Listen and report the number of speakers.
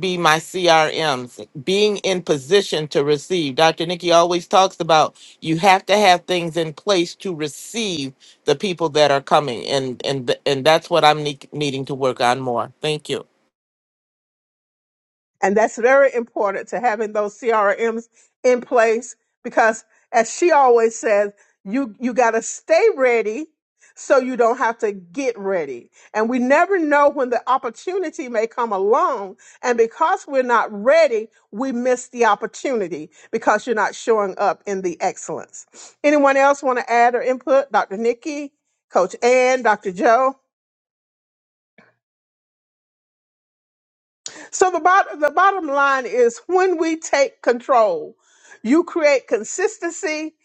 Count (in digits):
2